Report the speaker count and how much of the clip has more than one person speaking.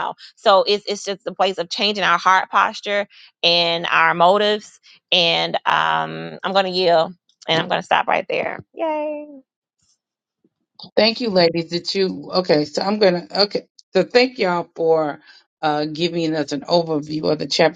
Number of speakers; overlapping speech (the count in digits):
2, no overlap